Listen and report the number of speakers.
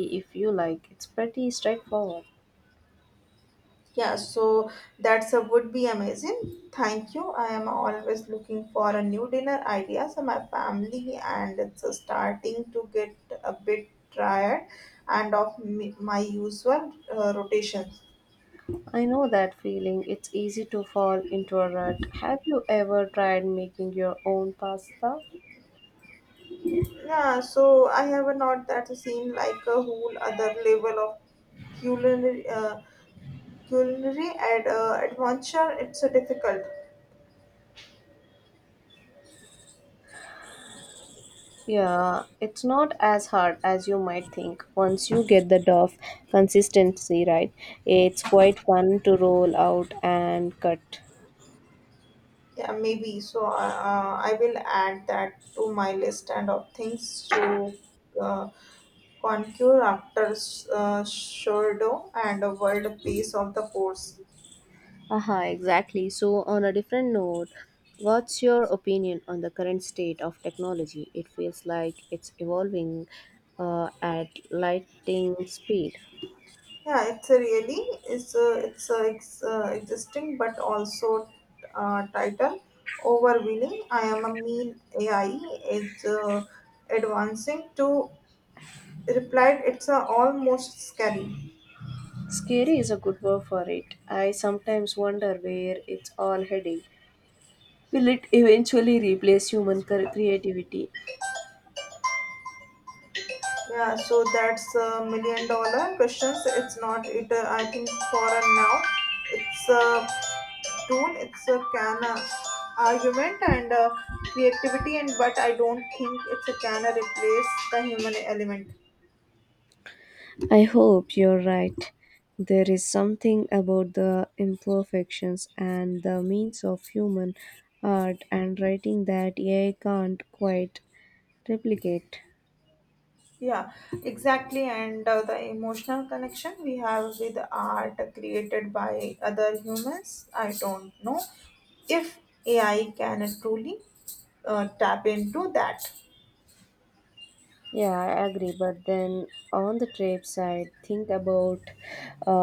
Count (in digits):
2